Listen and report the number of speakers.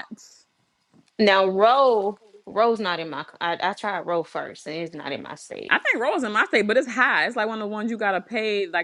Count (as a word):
two